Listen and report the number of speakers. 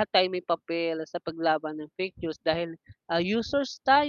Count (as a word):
one